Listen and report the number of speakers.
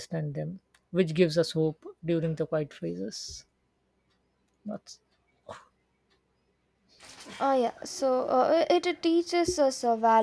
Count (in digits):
2